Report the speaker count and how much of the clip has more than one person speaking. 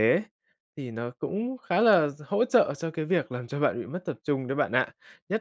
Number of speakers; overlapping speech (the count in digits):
1, no overlap